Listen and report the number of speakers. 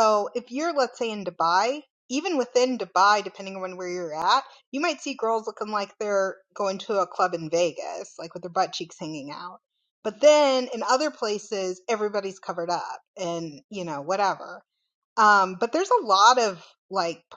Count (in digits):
1